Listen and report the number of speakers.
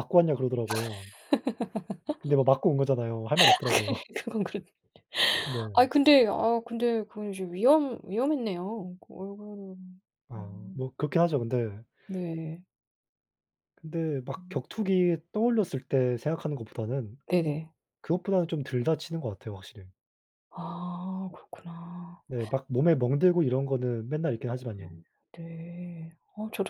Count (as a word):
two